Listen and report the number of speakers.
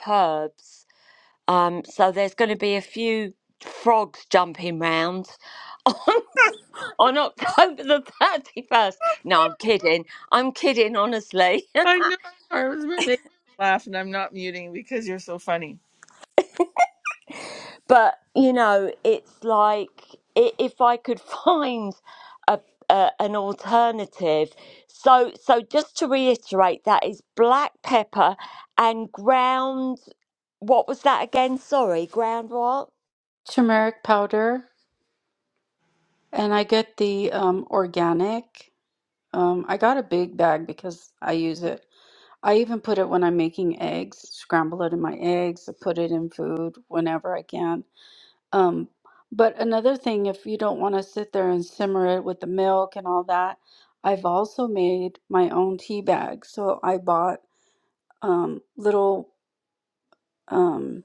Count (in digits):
3